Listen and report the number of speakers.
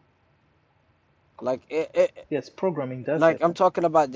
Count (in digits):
2